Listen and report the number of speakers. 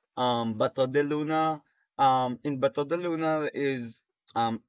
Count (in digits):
1